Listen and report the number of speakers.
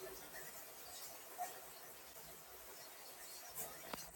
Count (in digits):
0